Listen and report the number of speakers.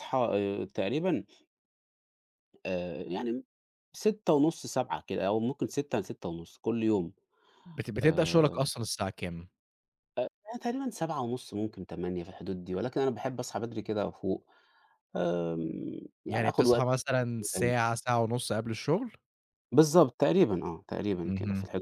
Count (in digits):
2